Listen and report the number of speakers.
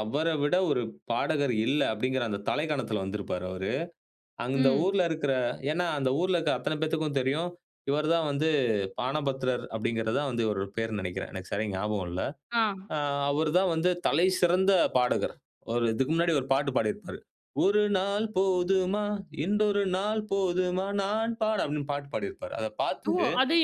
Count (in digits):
2